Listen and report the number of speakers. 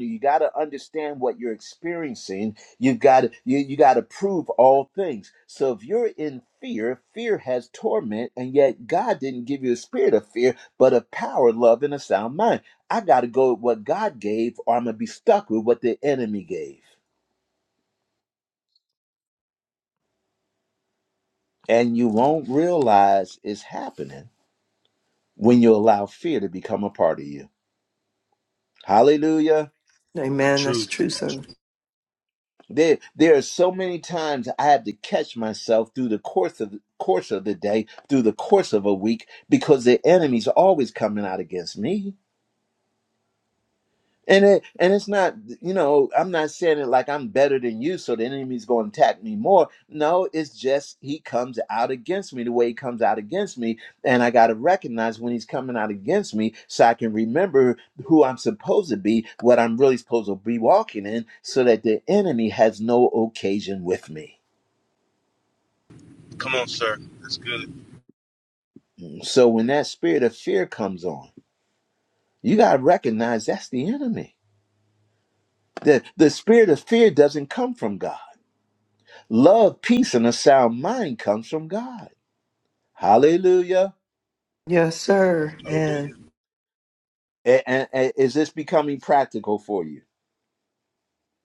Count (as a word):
three